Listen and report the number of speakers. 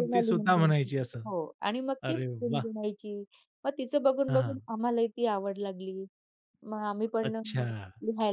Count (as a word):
two